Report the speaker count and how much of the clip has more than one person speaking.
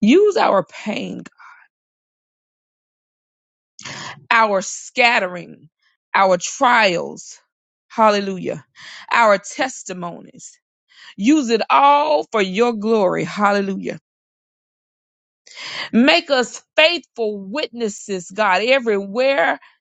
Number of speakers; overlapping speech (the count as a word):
one, no overlap